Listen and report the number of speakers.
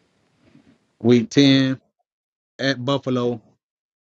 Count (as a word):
one